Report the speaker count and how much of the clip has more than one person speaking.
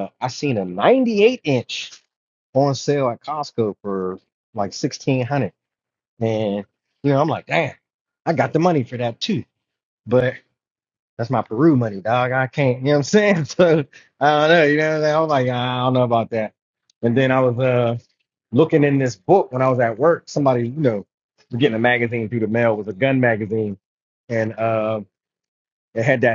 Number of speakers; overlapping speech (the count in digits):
1, no overlap